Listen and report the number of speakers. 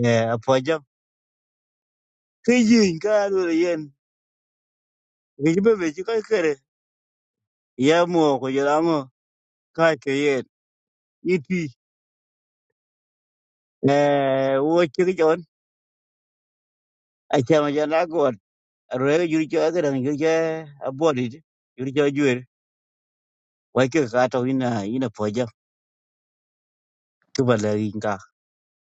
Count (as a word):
one